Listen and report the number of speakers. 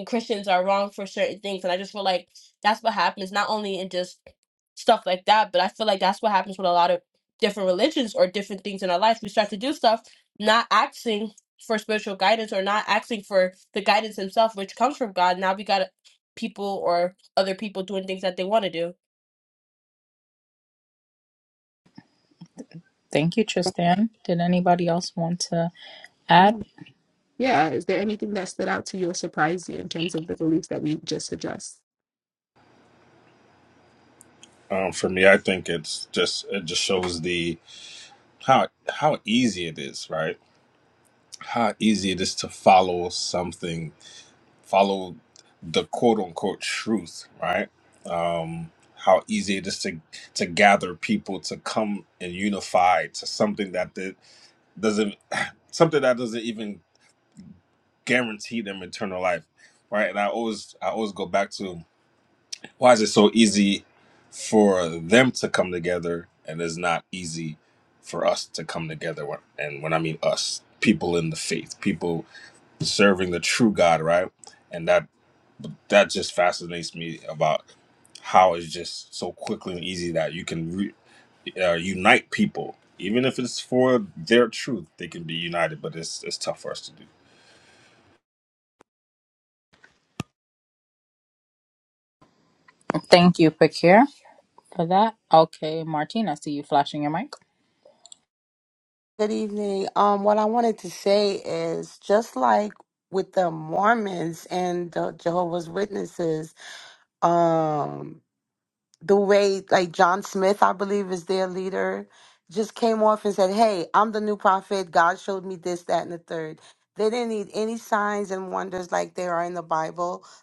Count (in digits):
5